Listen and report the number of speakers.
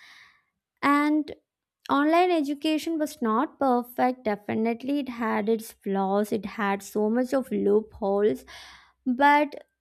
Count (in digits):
1